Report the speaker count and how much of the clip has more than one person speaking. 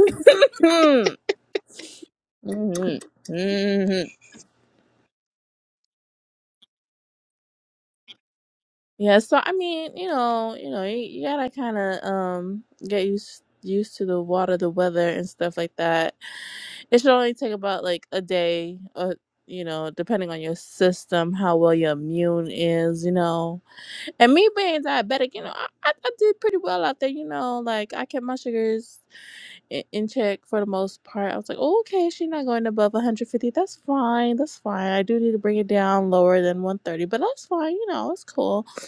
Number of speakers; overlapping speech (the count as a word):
one, no overlap